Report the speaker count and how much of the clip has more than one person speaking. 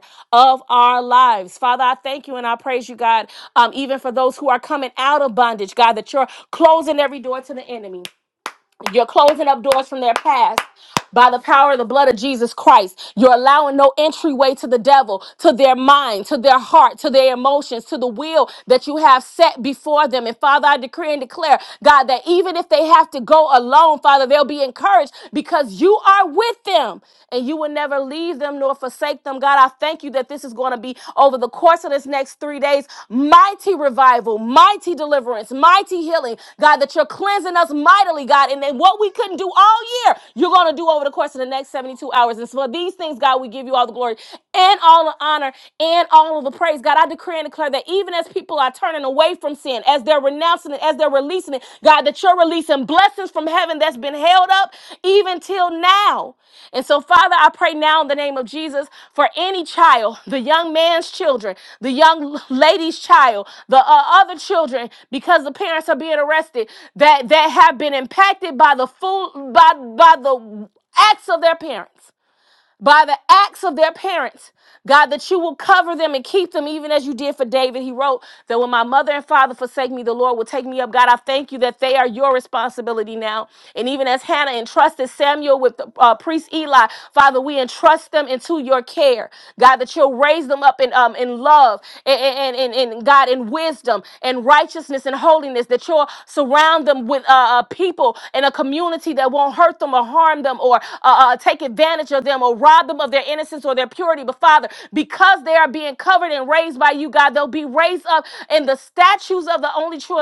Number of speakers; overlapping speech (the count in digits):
1, no overlap